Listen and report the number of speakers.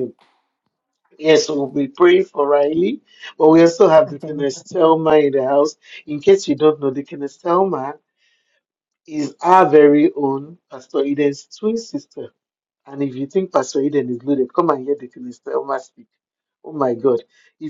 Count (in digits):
1